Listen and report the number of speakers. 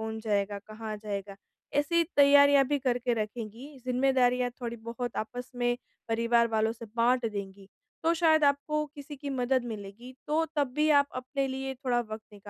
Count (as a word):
one